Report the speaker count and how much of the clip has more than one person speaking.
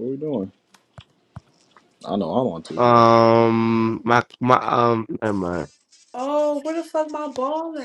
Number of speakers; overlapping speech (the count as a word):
three, about 3%